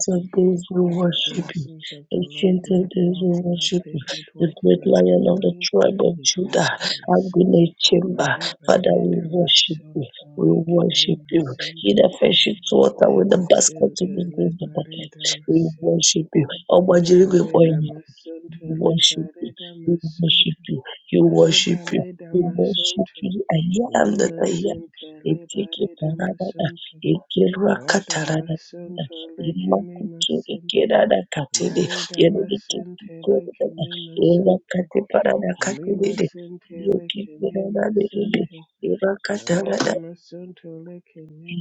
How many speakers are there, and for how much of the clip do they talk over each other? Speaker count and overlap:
2, about 61%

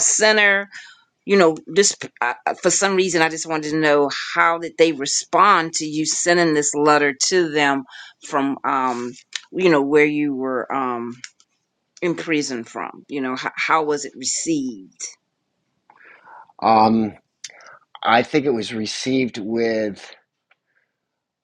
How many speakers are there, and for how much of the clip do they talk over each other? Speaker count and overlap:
2, no overlap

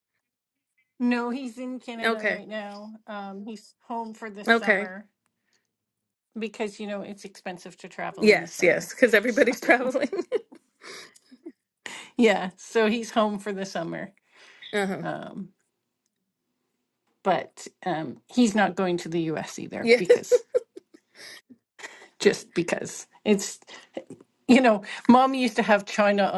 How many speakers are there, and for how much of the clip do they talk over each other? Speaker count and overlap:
2, about 7%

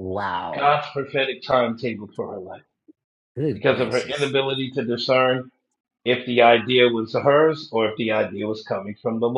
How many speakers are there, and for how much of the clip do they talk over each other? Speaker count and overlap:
2, about 8%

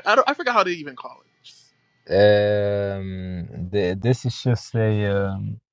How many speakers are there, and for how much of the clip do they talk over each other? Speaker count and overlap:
2, no overlap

